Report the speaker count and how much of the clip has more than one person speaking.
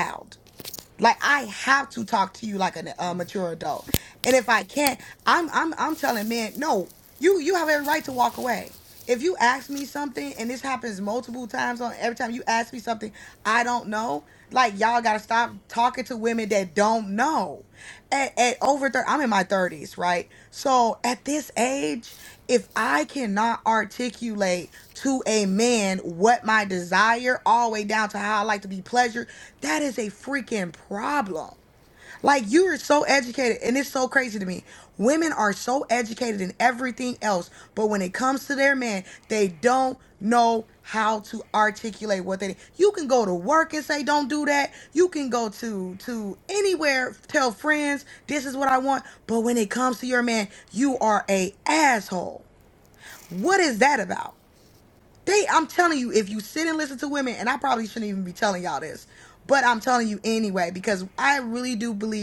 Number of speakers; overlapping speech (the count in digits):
1, no overlap